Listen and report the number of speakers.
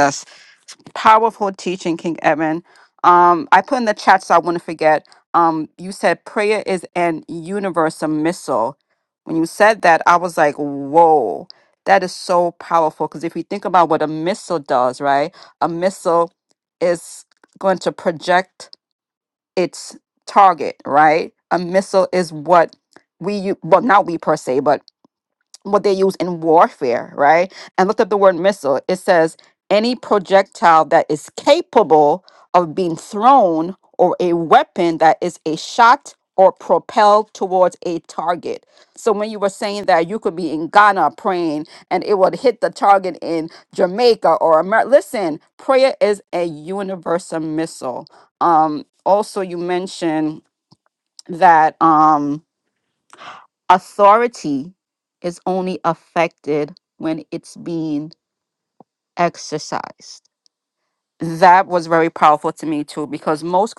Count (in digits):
1